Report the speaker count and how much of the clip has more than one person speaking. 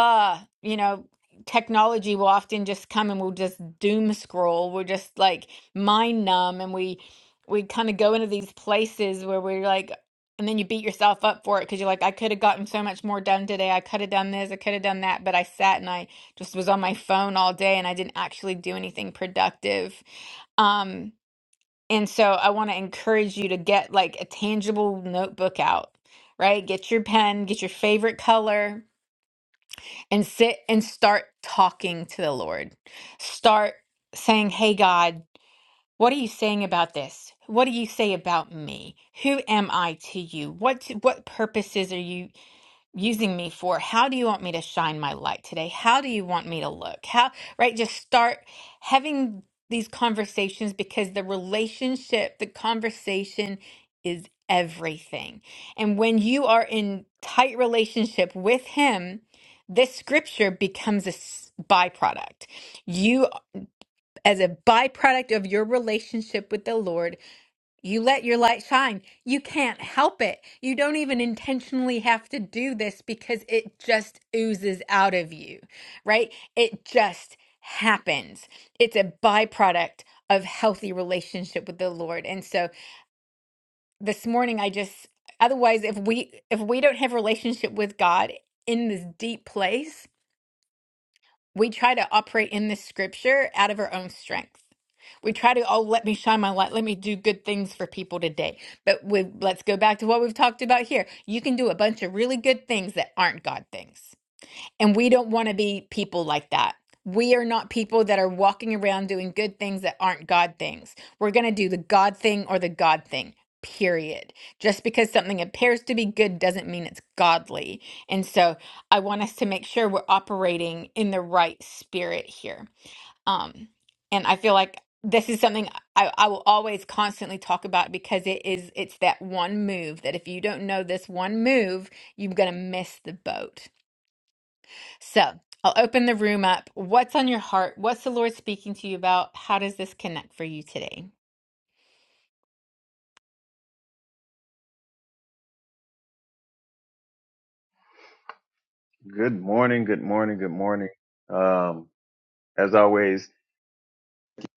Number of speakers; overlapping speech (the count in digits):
2, no overlap